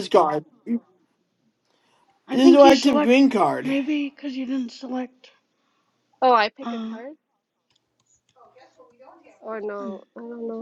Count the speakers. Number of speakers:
three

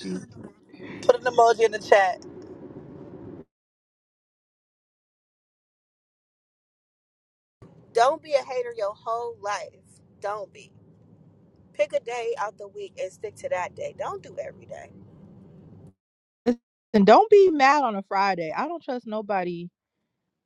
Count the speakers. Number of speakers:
three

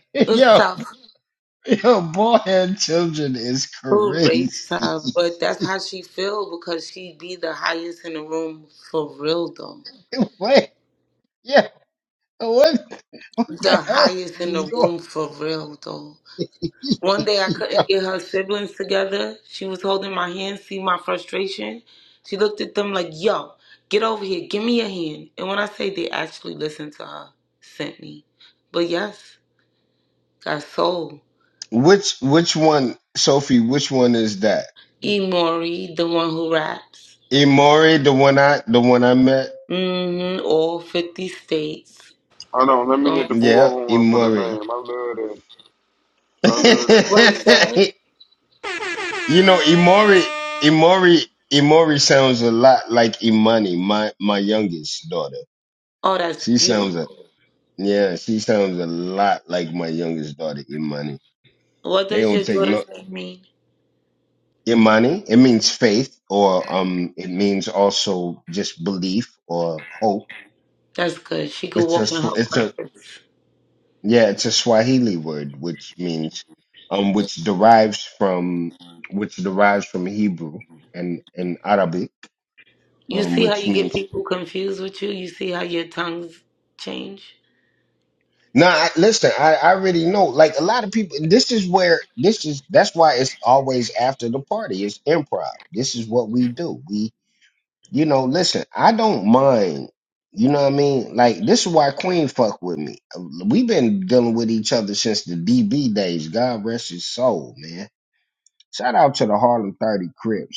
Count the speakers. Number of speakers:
three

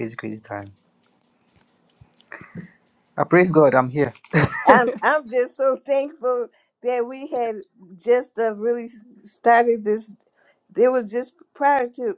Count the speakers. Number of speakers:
two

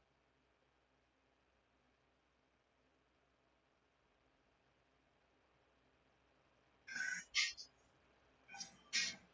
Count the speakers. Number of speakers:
zero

